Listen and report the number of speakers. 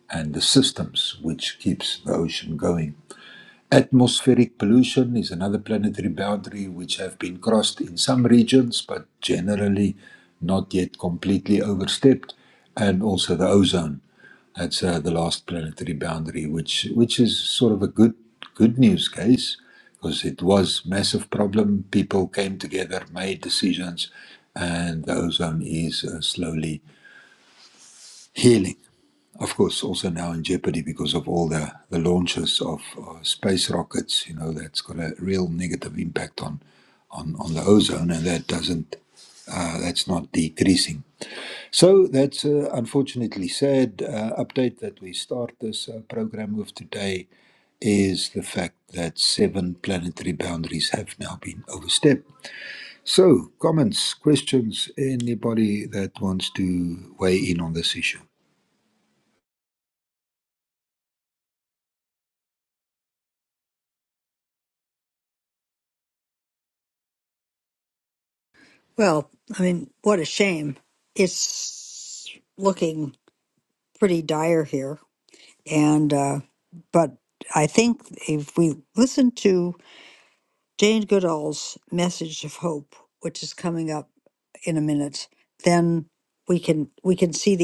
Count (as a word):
two